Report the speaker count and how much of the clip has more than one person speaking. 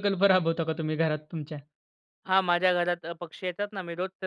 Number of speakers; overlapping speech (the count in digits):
2, no overlap